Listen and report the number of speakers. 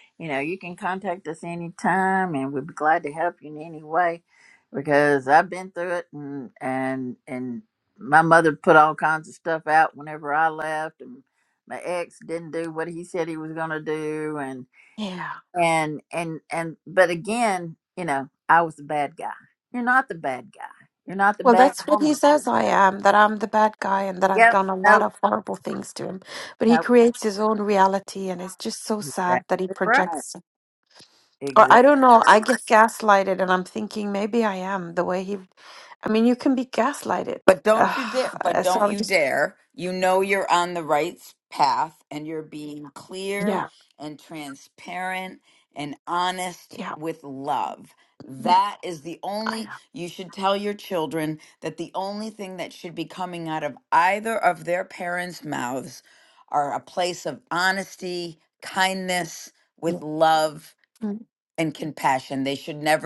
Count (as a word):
three